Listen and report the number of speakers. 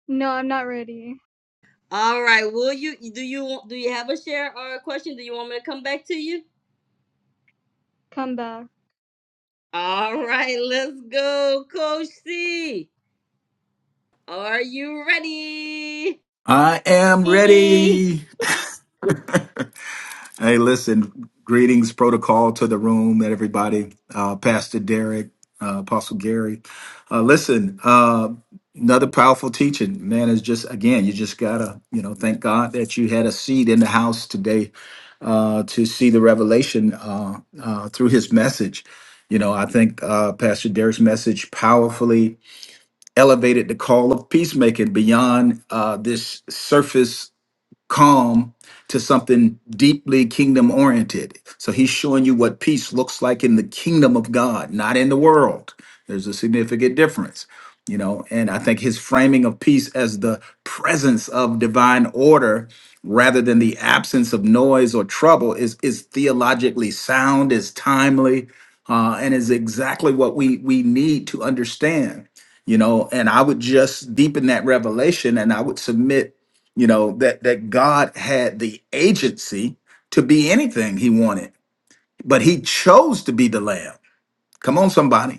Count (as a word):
three